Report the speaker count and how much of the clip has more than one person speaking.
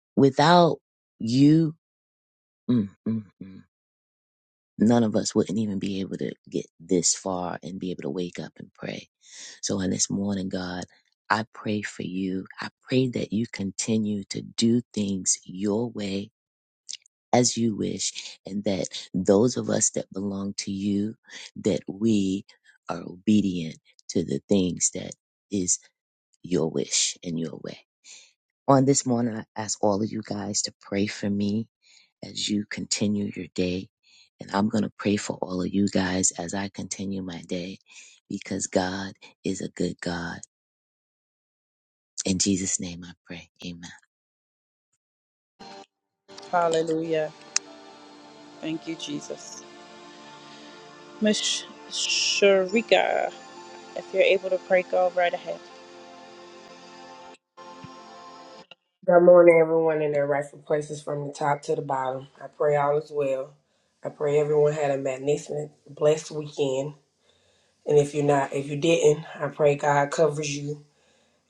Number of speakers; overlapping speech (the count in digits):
3, no overlap